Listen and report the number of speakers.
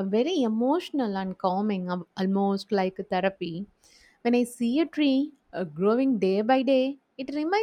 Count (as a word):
one